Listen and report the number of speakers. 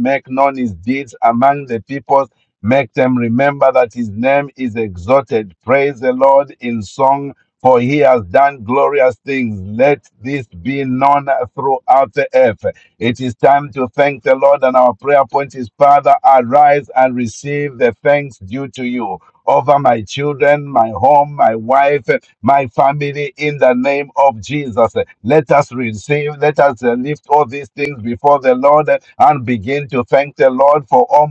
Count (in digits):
1